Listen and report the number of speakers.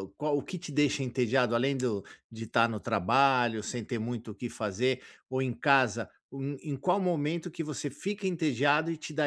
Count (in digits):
1